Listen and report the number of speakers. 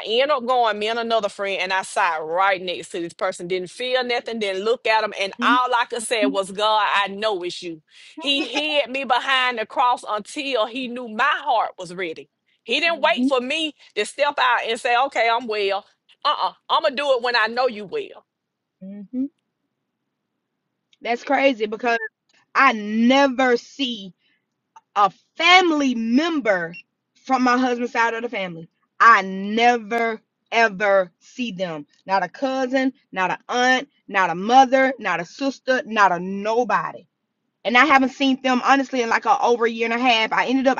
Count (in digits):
2